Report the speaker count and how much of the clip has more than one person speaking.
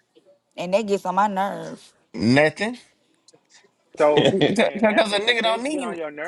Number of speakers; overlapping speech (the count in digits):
3, about 24%